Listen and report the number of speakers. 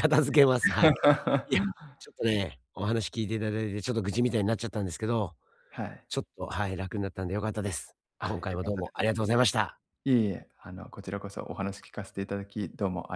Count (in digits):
2